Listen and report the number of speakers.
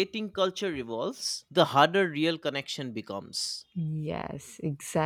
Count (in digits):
2